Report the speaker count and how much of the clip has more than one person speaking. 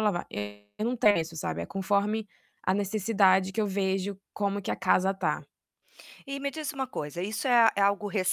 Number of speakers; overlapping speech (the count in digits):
2, no overlap